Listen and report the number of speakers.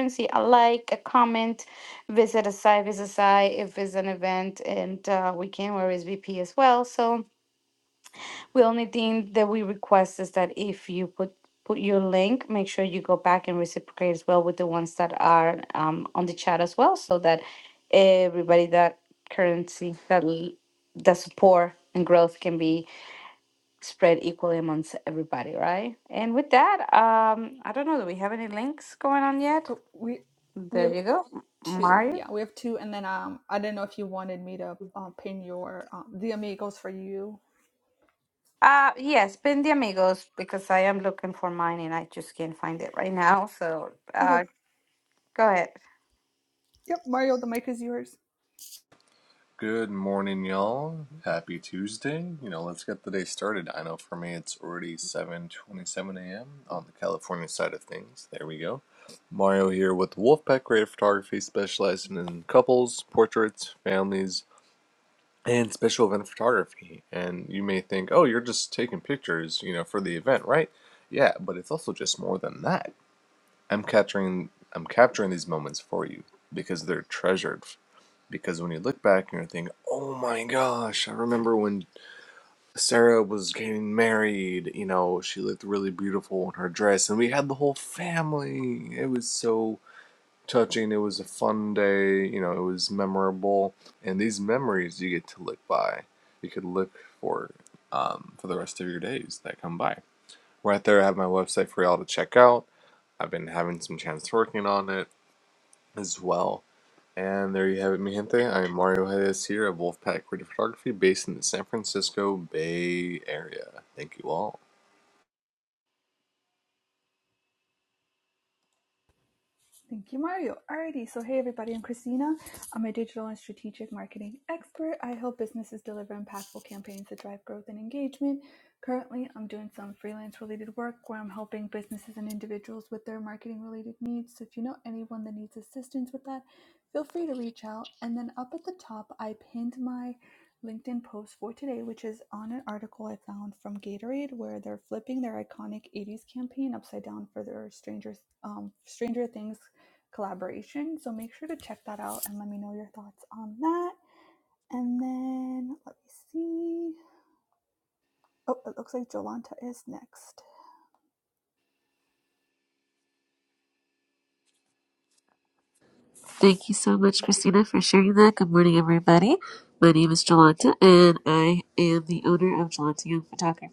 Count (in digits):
4